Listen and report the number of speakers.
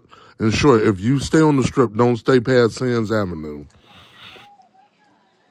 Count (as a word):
one